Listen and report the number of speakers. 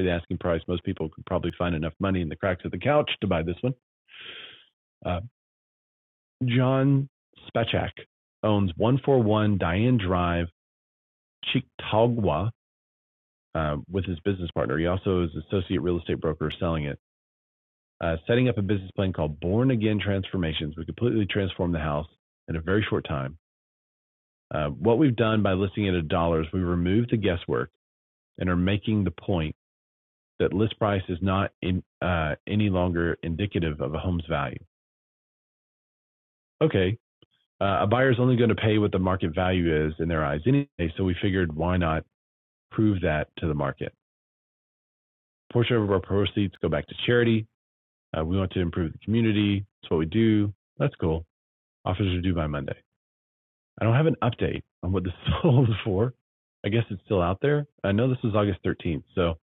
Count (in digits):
1